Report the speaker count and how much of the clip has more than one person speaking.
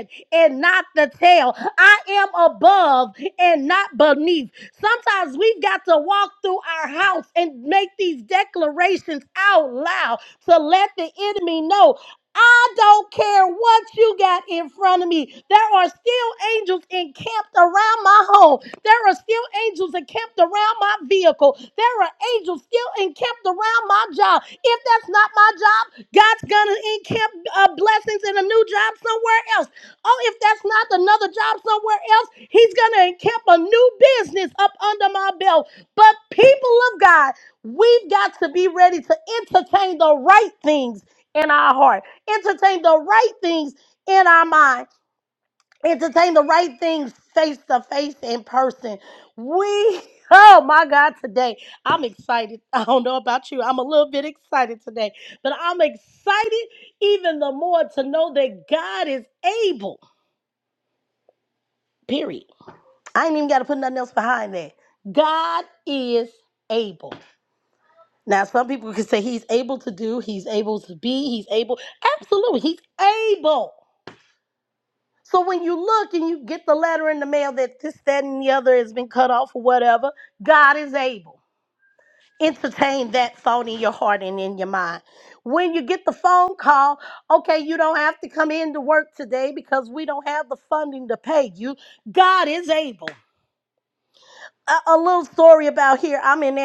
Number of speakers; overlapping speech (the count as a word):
one, no overlap